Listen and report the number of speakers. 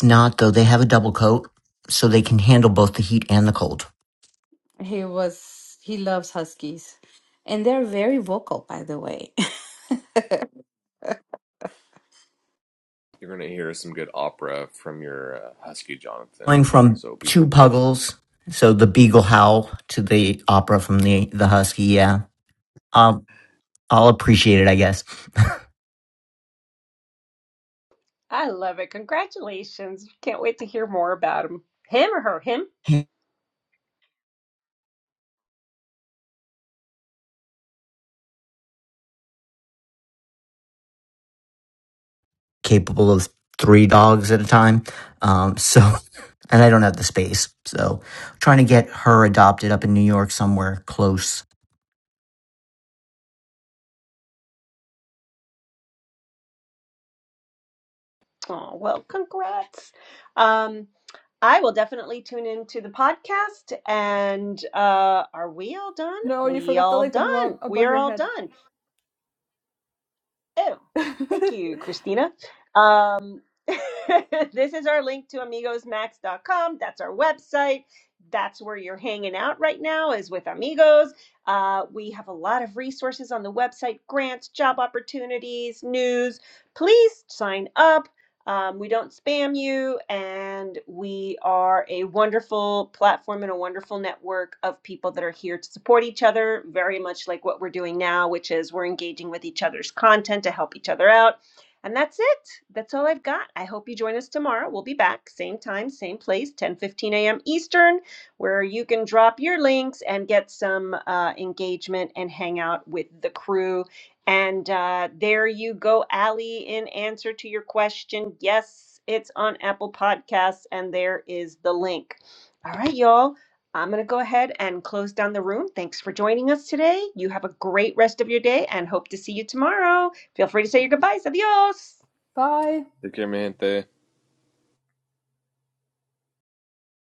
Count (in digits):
5